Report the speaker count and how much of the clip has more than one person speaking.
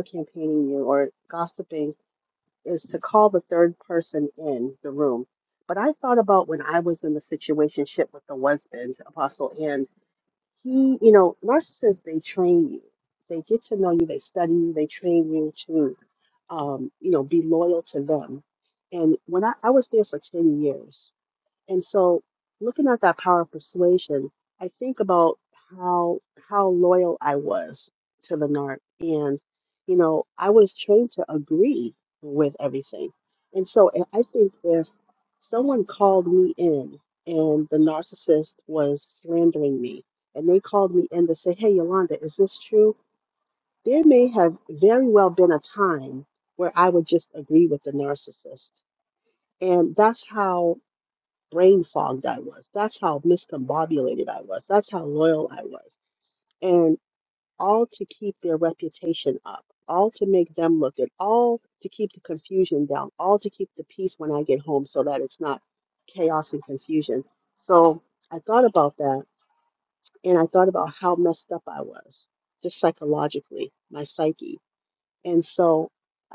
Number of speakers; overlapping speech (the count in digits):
1, no overlap